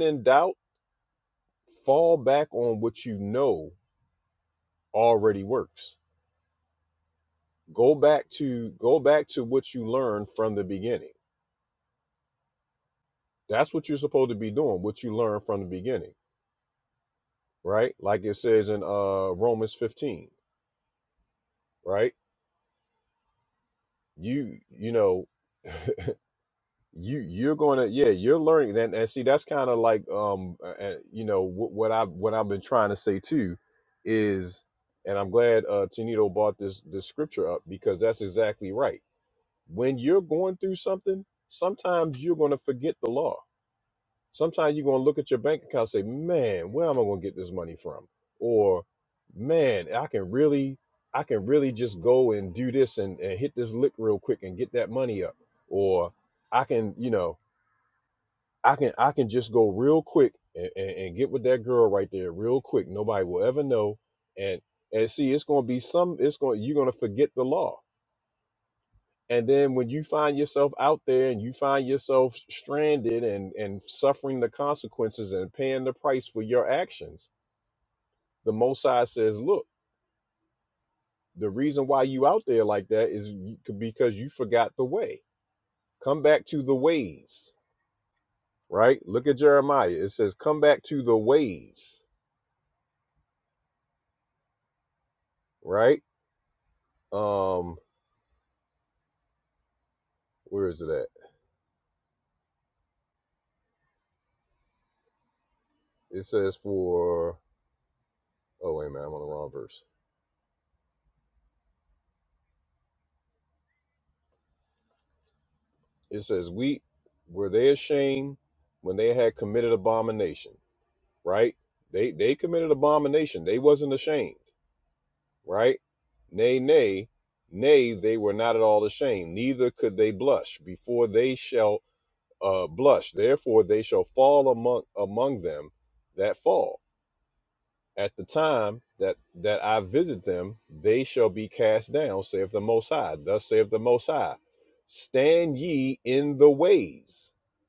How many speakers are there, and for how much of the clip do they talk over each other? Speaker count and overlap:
one, no overlap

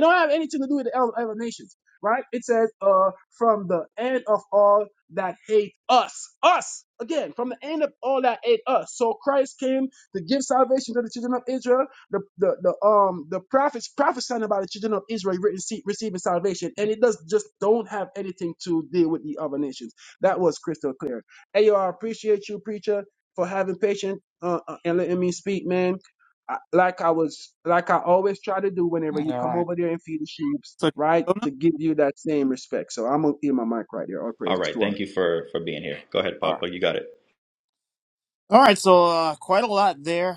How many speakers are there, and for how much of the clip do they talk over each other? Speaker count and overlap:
three, about 3%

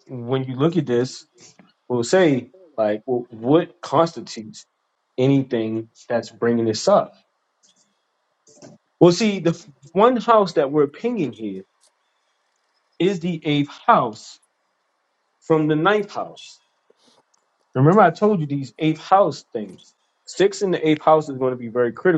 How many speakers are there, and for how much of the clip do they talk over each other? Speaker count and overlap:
one, no overlap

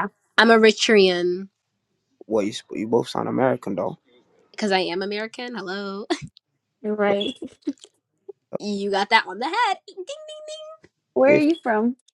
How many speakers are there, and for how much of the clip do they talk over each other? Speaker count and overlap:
three, about 2%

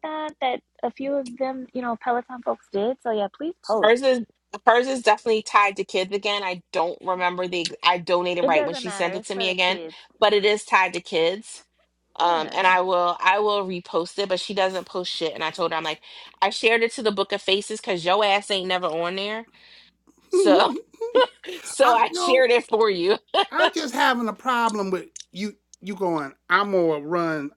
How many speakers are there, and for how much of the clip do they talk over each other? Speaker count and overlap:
three, about 10%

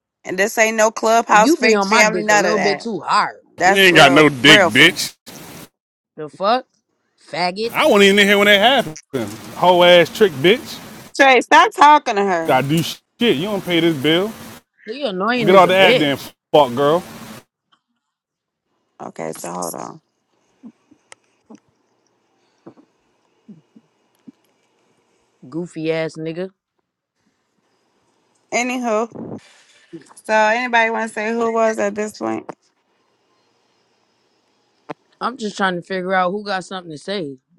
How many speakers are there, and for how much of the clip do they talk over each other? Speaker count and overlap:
three, about 10%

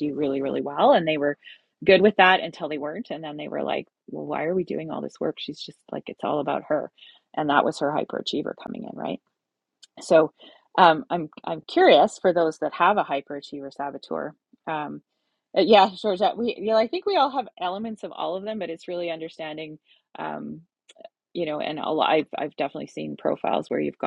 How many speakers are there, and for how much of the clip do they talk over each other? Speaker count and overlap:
one, no overlap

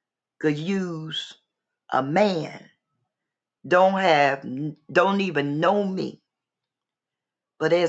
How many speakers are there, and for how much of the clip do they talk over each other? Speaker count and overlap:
one, no overlap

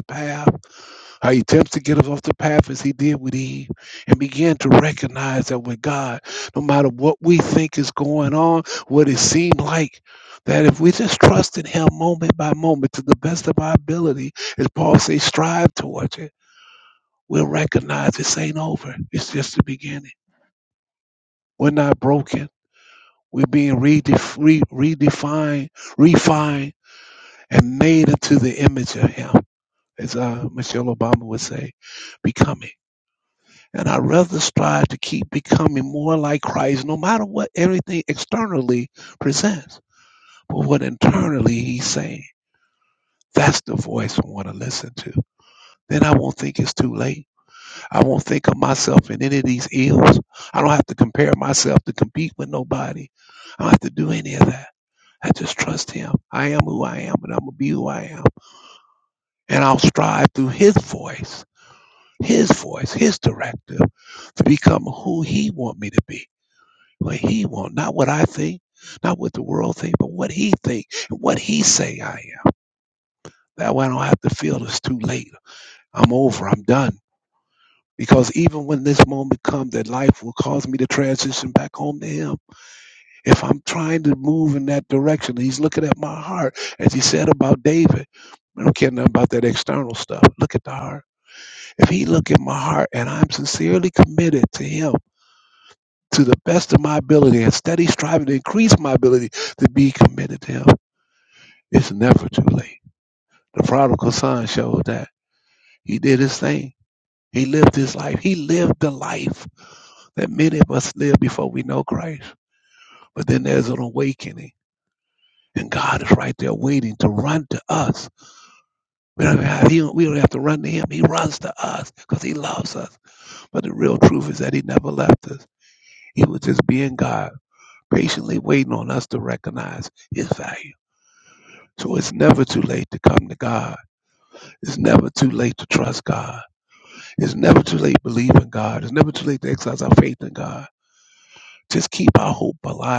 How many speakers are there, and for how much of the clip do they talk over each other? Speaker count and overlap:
one, no overlap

